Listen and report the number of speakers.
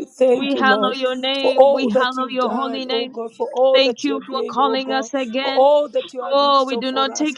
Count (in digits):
2